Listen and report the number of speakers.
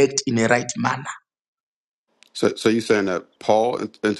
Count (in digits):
2